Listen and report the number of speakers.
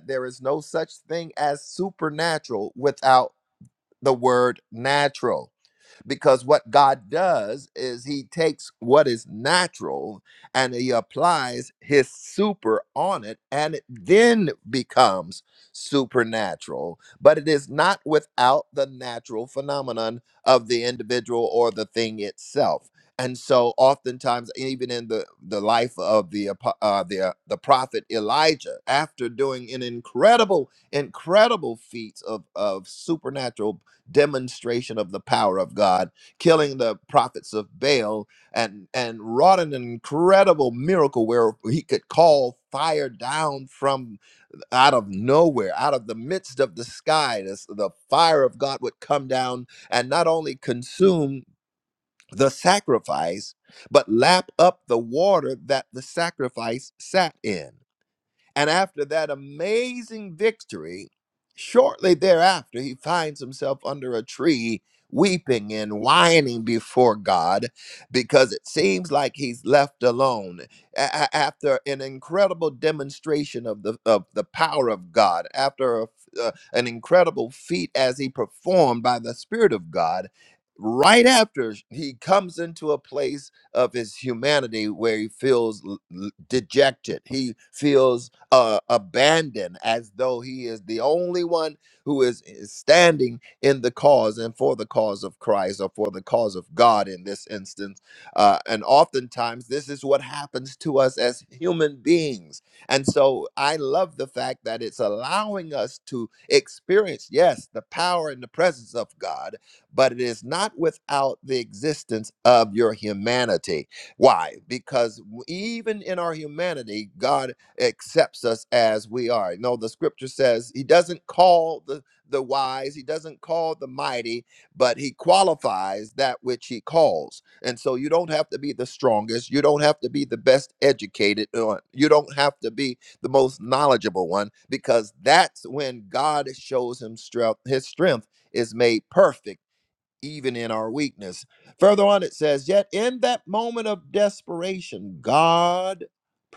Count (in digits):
1